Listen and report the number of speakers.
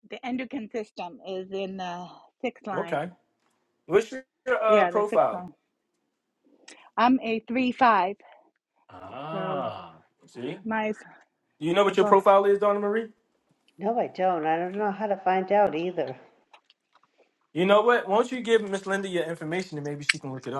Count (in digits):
3